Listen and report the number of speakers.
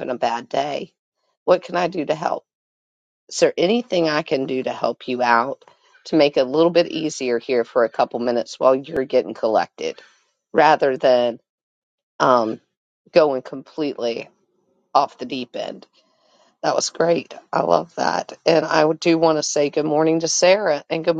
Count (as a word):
one